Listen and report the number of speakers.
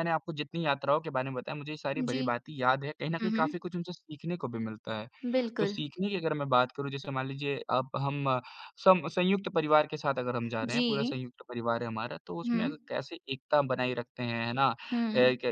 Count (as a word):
two